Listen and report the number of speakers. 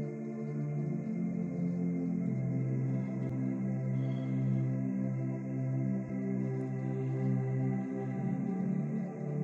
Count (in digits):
0